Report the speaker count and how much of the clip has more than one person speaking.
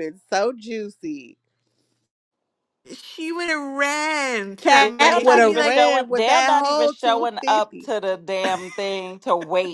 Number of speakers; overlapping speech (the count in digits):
3, about 33%